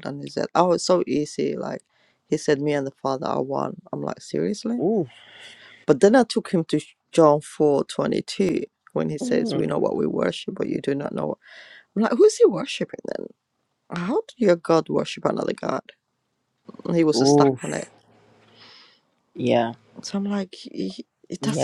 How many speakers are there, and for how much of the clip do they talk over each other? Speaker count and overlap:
2, about 6%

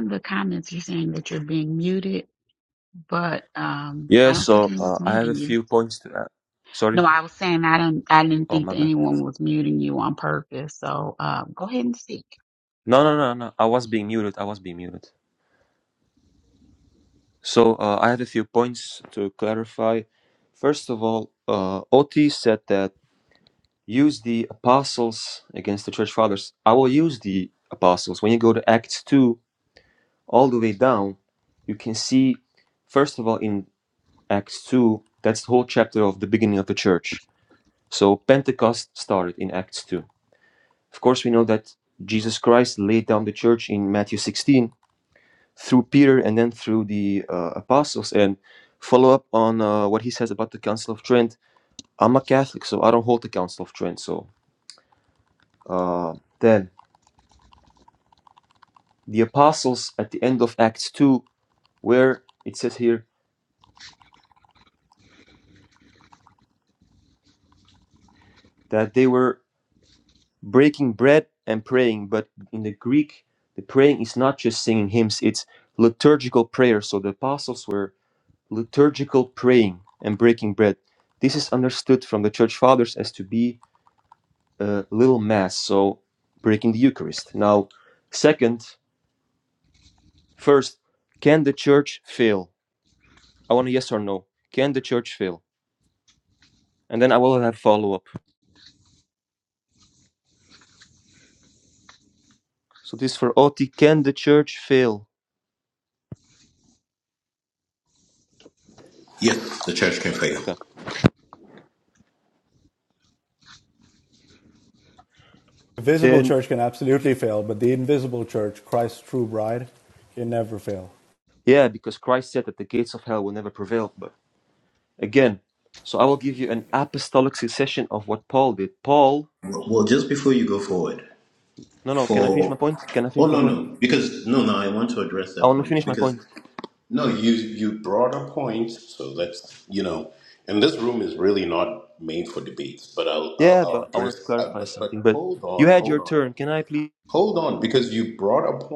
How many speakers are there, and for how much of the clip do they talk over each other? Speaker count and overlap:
4, about 4%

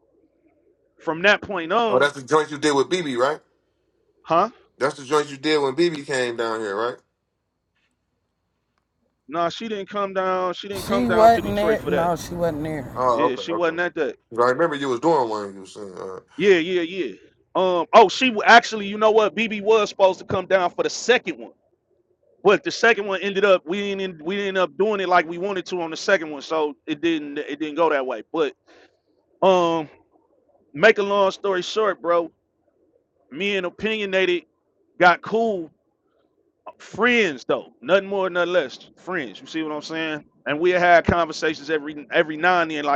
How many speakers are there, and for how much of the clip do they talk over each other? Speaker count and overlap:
3, about 5%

